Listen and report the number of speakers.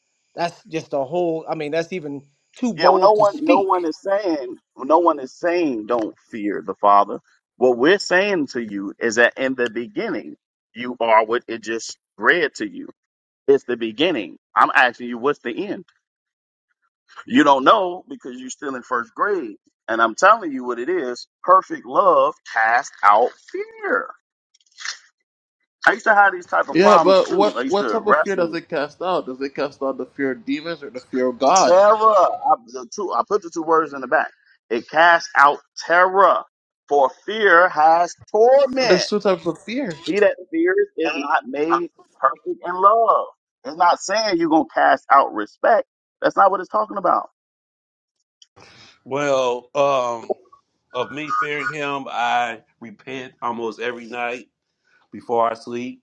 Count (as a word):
four